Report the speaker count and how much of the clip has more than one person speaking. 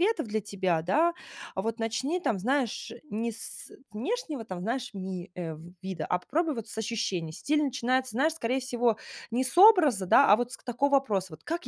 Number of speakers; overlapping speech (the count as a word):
one, no overlap